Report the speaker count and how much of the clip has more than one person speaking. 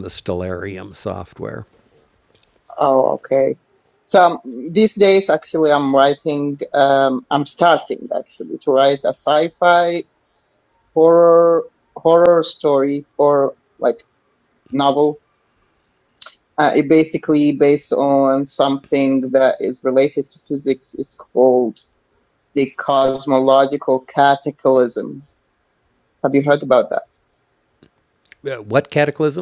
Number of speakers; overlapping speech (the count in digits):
2, no overlap